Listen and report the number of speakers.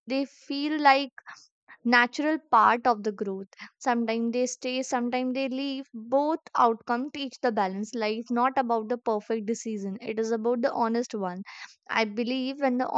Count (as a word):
one